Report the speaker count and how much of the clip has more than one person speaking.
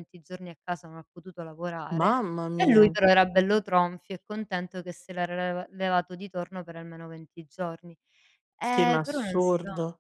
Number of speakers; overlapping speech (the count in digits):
2, about 17%